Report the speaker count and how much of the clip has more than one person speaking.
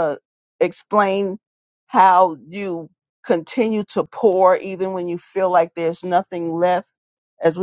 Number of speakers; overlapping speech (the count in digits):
1, no overlap